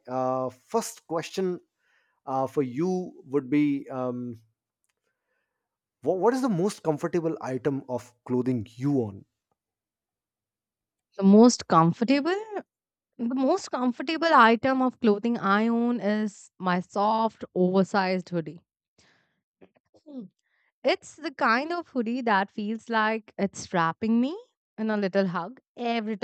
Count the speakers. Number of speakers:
two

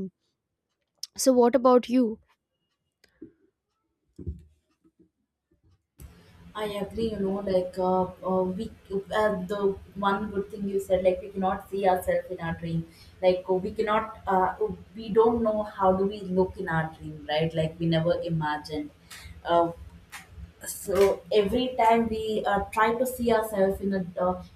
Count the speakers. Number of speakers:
two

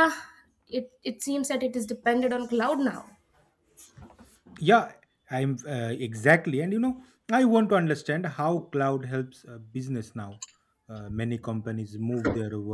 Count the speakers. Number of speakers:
two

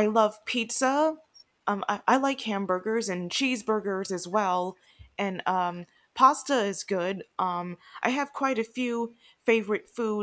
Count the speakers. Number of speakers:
one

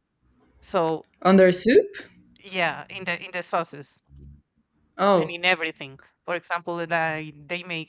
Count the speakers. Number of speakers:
two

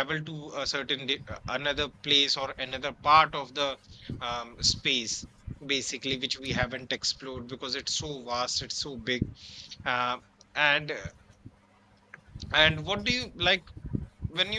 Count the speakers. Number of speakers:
one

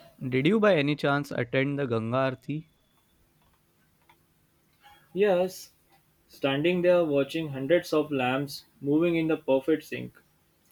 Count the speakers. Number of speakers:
two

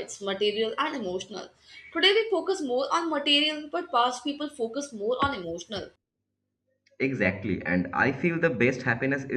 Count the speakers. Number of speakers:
two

